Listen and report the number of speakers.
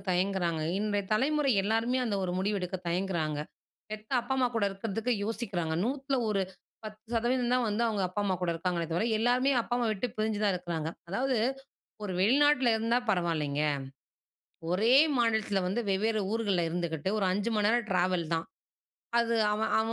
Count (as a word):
one